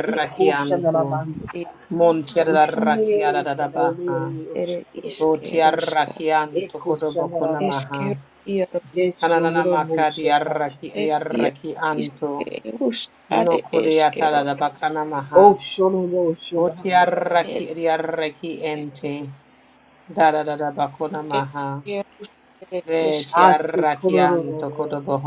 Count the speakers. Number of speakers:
3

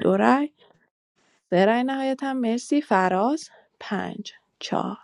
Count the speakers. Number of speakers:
1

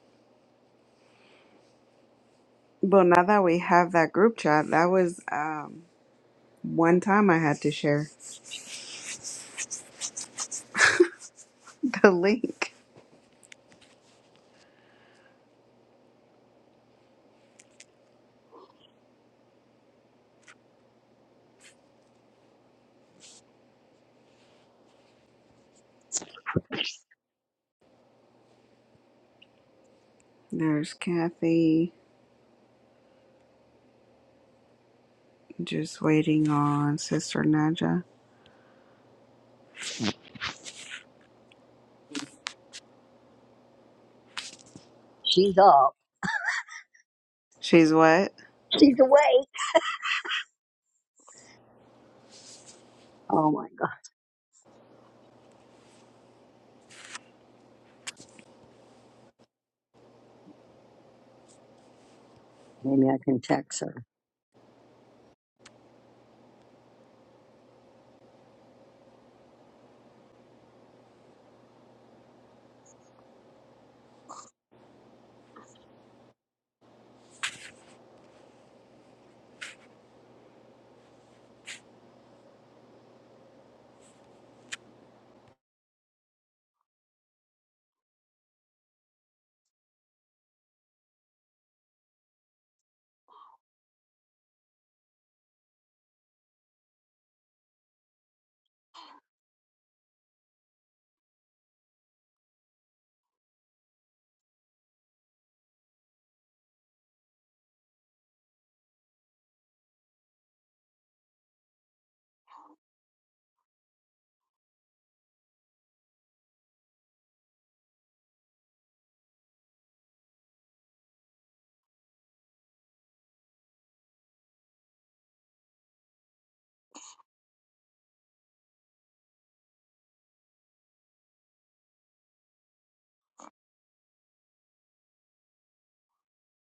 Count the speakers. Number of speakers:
2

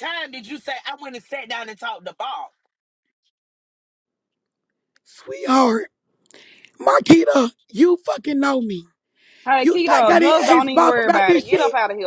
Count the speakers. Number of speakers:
3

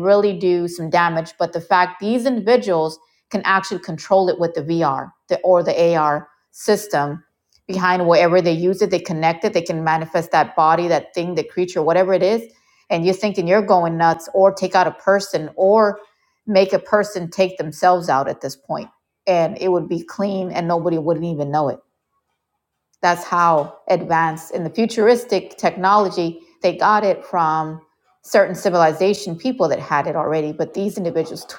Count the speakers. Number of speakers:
1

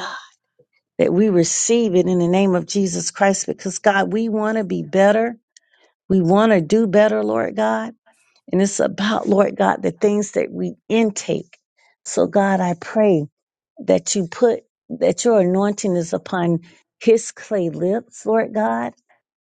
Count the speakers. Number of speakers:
1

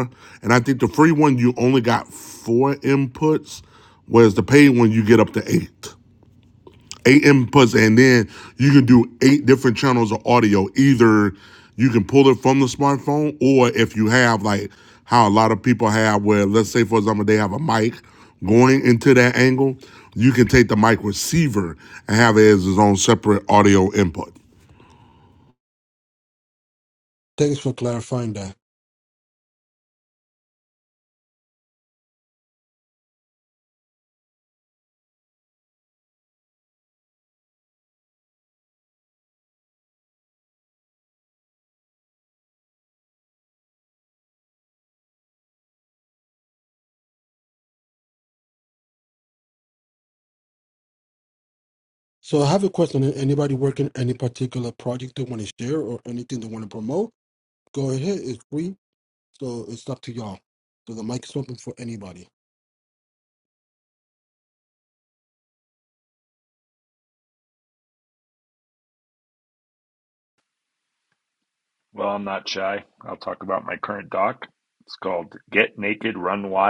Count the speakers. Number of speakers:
3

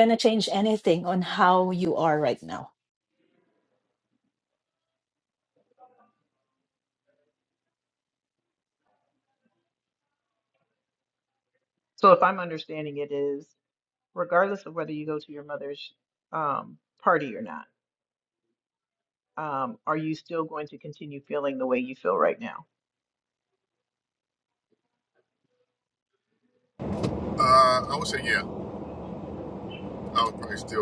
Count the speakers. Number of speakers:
3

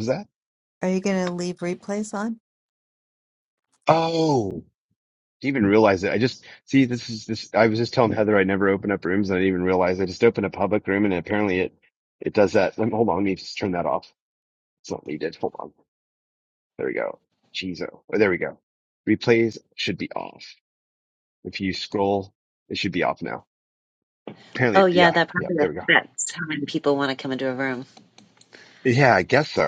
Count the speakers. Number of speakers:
3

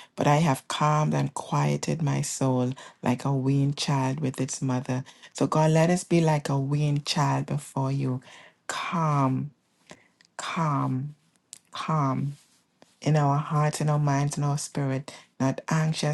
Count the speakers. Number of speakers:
1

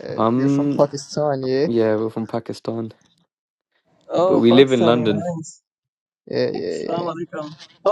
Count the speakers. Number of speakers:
3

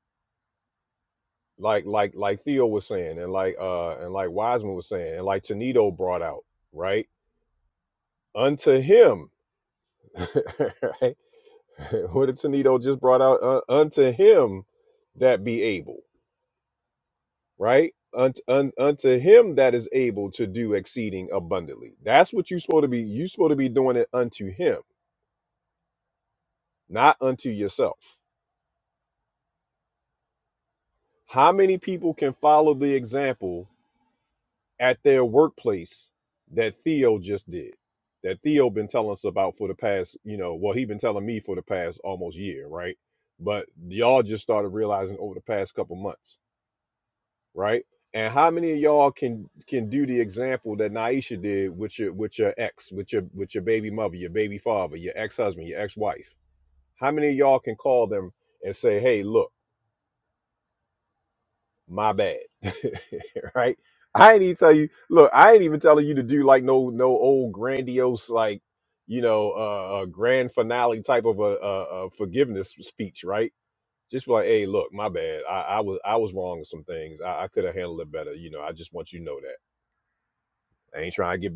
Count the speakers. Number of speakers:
1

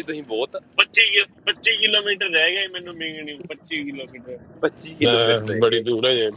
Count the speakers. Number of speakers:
3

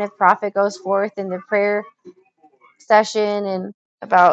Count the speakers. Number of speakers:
1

